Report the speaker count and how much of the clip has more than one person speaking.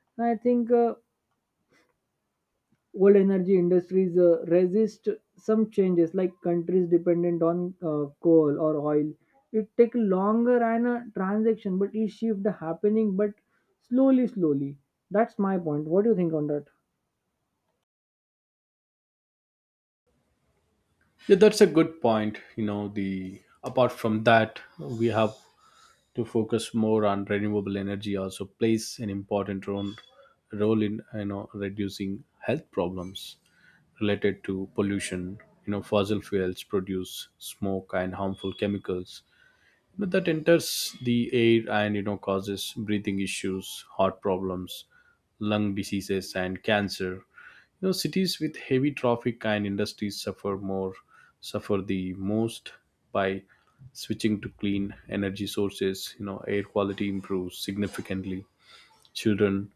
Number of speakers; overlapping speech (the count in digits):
2, no overlap